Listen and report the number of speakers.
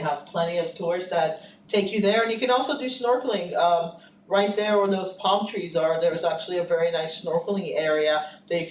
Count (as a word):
one